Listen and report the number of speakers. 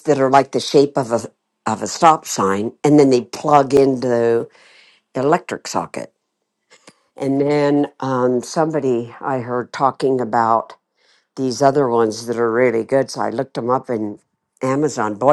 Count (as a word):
one